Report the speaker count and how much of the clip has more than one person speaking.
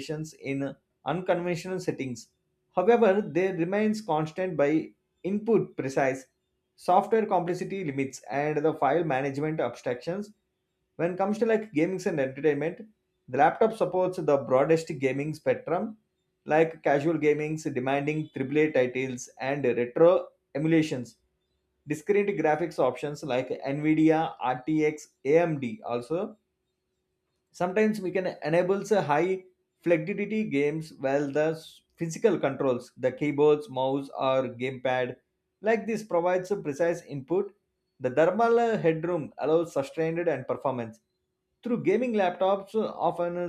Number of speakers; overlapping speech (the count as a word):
one, no overlap